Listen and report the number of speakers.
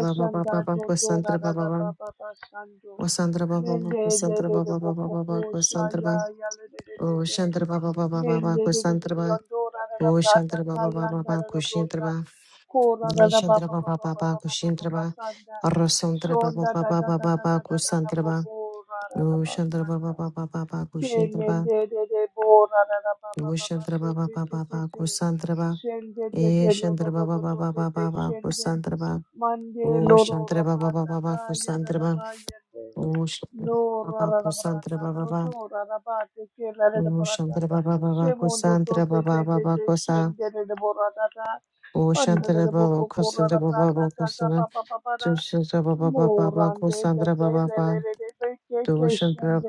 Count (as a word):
two